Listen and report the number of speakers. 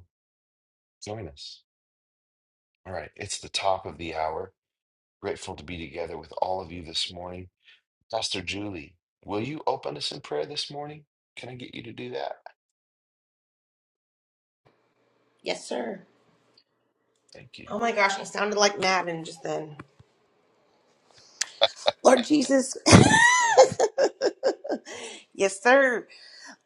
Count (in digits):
2